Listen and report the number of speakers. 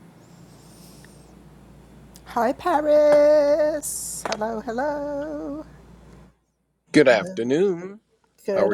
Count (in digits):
2